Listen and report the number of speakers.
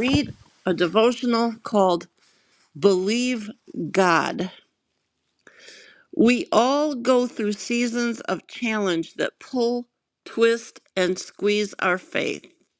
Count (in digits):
1